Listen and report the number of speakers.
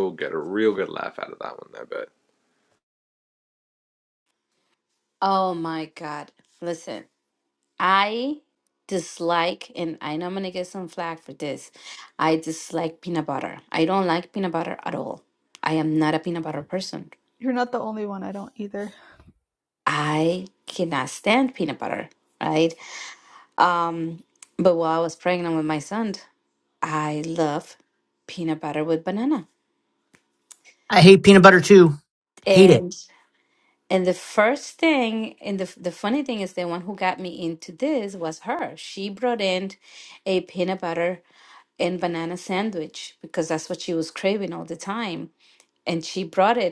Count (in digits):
4